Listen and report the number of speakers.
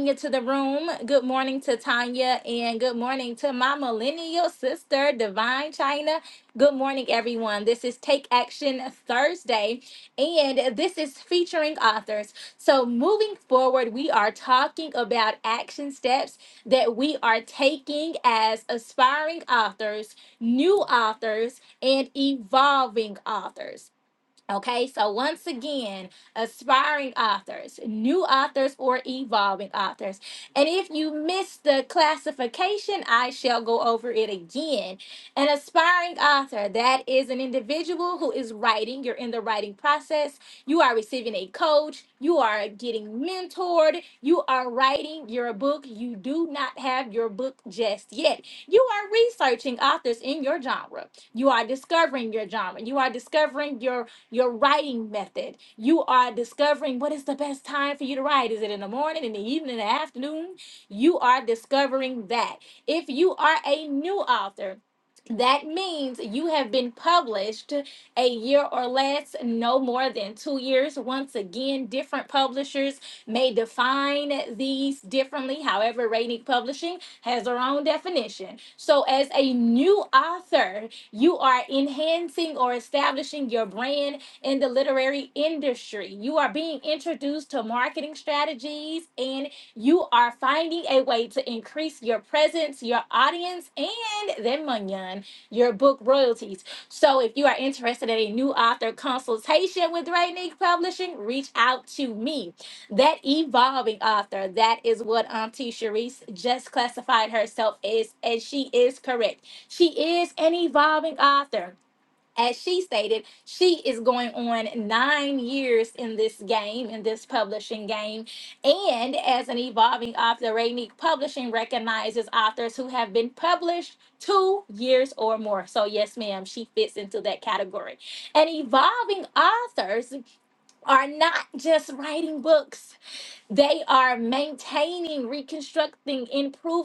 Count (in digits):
1